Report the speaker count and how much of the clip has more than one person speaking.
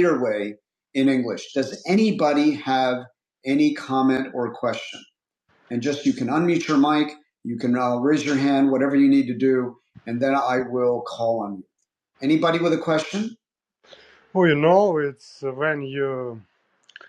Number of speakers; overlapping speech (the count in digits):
2, no overlap